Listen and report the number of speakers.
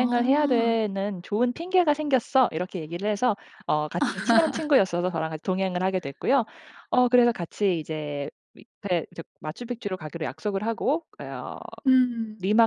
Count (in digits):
2